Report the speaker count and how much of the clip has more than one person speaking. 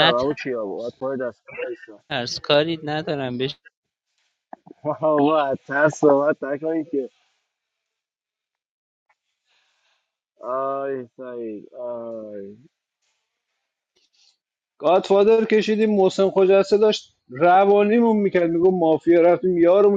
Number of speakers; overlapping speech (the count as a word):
three, about 1%